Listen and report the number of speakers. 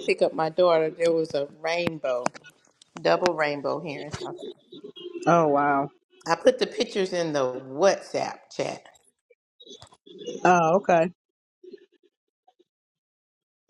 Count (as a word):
two